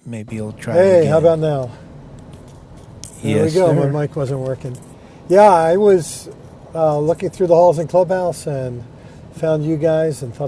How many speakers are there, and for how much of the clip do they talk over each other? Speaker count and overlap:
2, about 14%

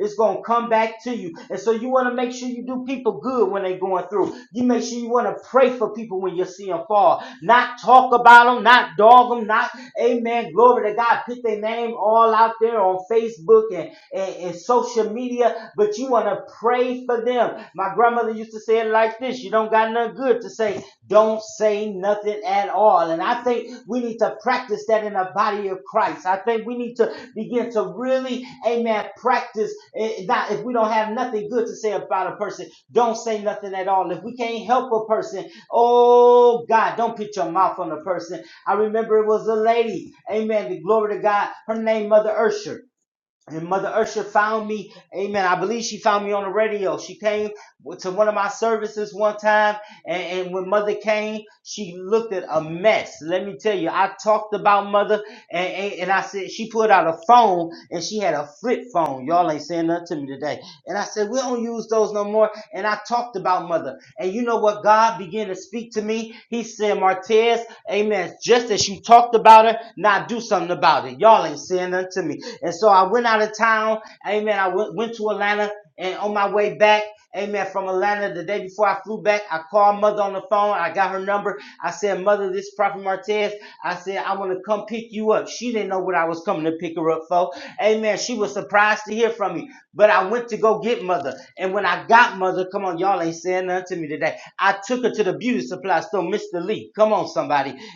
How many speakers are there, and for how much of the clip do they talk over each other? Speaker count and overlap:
1, no overlap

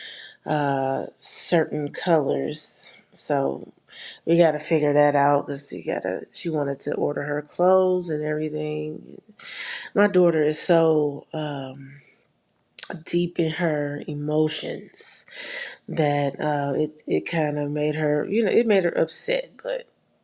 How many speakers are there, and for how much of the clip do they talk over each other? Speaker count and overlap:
1, no overlap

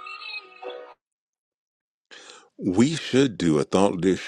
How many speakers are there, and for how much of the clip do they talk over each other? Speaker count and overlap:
1, no overlap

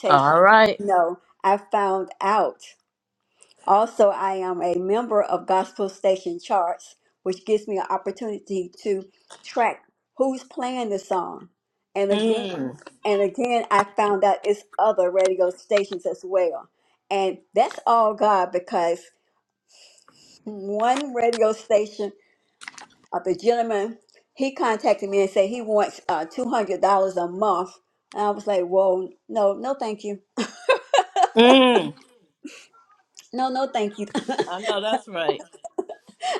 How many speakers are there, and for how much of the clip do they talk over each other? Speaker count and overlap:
2, about 1%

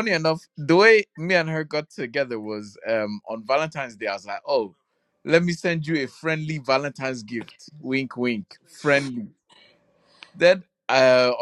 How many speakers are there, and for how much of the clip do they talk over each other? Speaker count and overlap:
1, no overlap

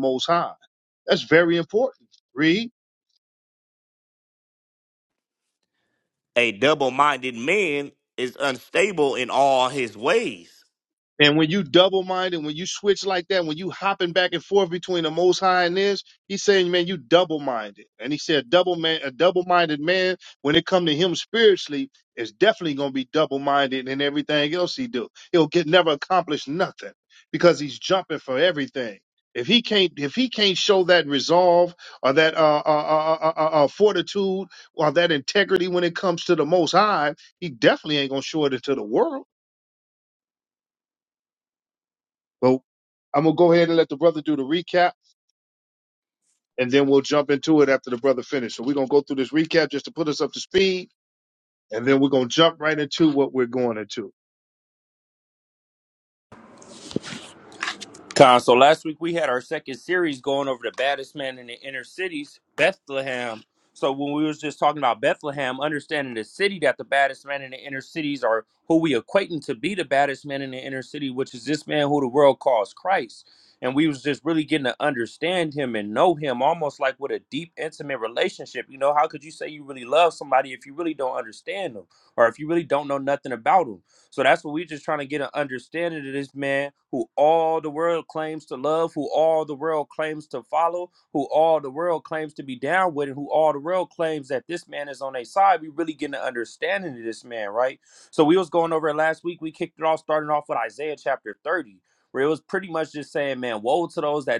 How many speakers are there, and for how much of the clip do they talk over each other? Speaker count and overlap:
3, no overlap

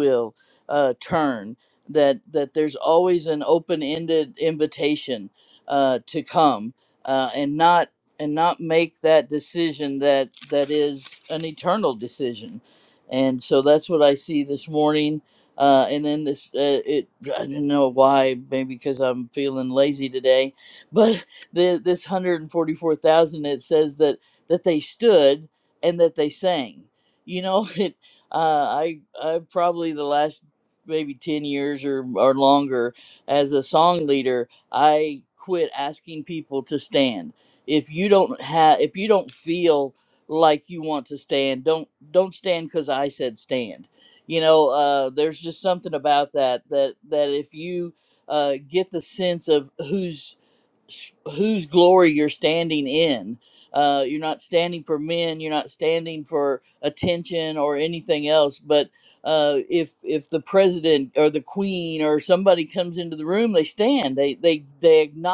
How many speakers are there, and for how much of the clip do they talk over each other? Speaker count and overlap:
1, no overlap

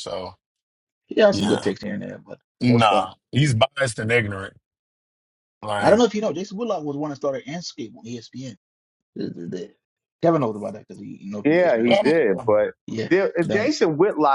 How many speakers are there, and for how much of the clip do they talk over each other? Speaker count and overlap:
3, about 14%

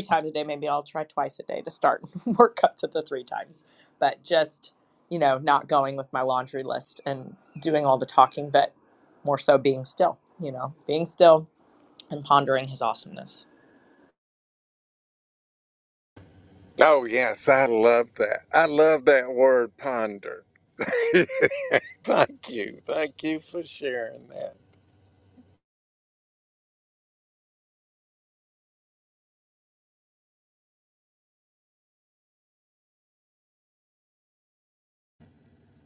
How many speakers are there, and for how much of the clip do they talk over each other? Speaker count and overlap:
2, no overlap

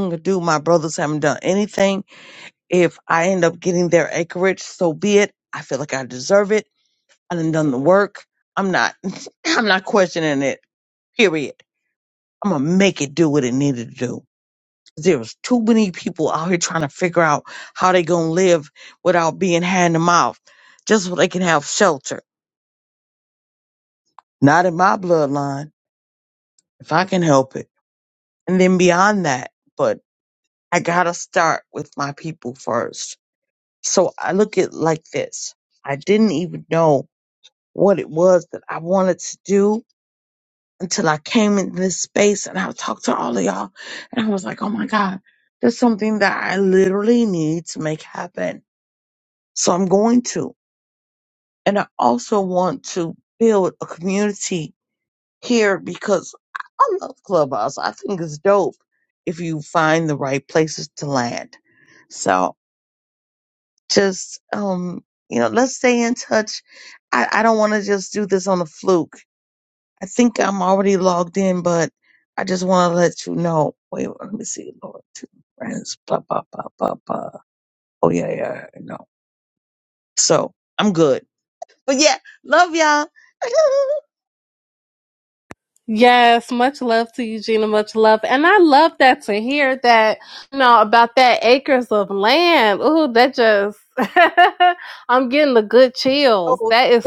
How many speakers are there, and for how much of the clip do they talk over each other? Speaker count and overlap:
2, under 1%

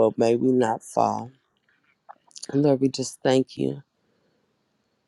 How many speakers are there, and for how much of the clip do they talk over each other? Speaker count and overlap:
1, no overlap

